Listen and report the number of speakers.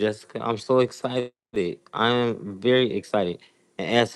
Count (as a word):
one